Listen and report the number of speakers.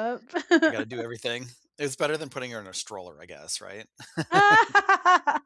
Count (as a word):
two